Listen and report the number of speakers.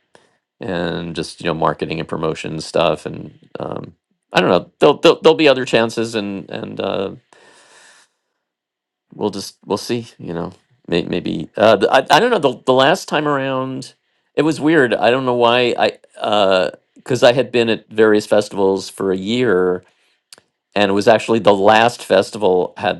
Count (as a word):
one